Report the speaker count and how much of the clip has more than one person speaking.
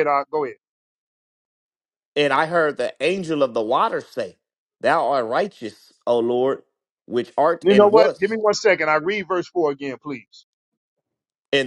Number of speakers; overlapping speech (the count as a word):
two, about 5%